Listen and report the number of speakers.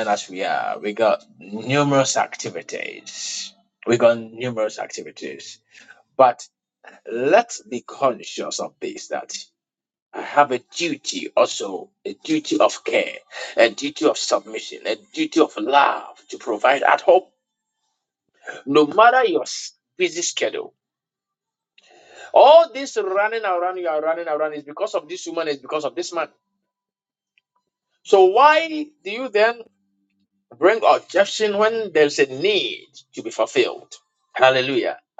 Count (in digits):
1